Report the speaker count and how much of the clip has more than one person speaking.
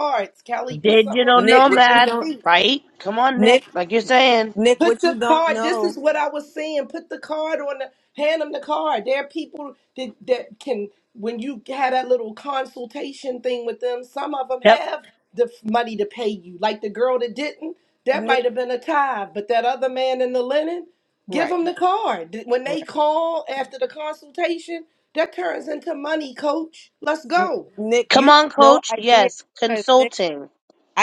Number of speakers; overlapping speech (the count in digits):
3, about 18%